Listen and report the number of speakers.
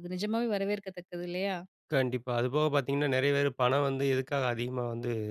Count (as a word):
two